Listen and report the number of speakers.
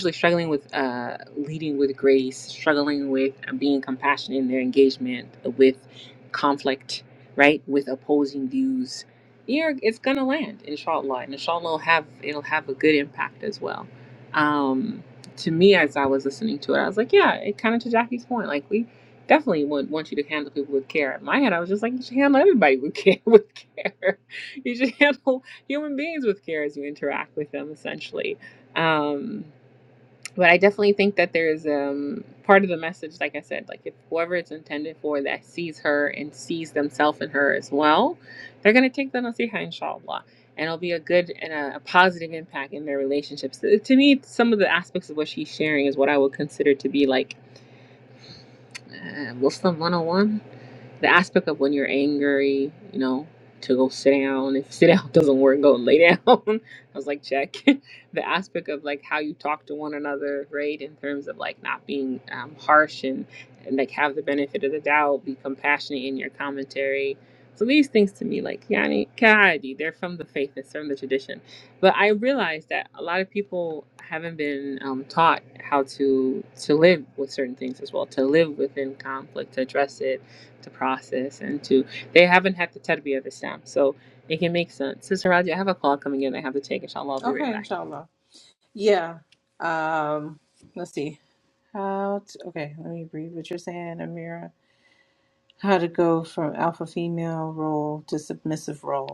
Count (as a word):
two